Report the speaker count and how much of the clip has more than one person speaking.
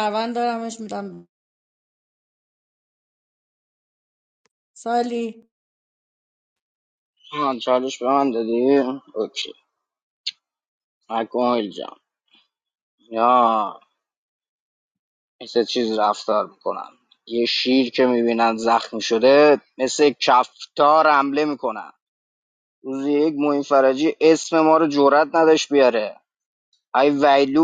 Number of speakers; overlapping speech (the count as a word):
two, no overlap